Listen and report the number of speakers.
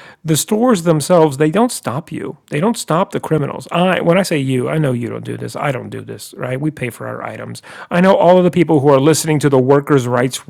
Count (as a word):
one